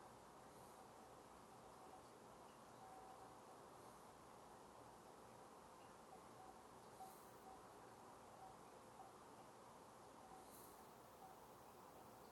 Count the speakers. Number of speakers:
zero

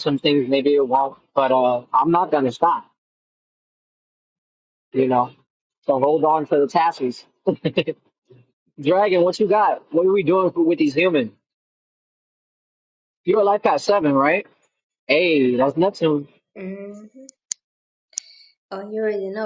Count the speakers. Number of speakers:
two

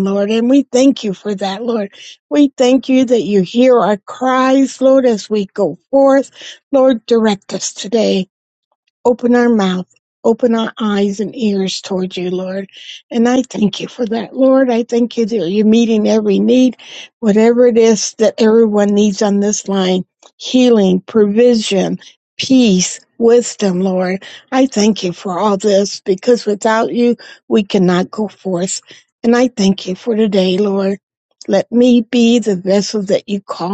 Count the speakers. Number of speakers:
one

